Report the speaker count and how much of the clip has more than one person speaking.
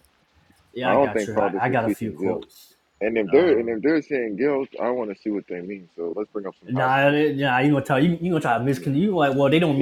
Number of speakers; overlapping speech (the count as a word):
two, about 27%